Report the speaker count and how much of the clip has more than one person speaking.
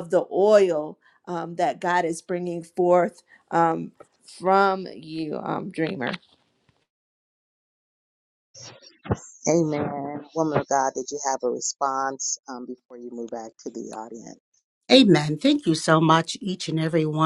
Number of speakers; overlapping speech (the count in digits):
3, no overlap